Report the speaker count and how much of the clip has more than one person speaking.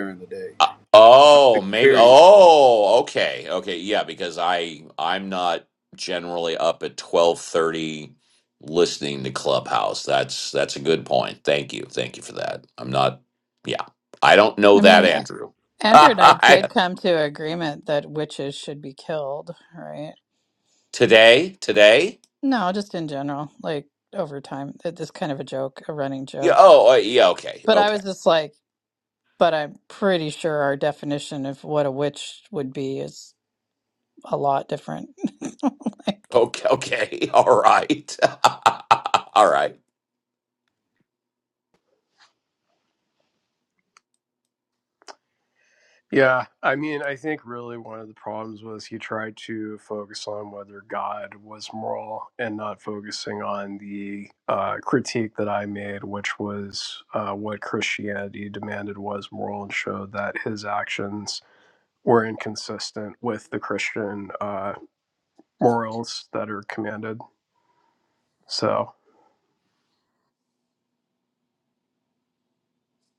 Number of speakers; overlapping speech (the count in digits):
4, about 3%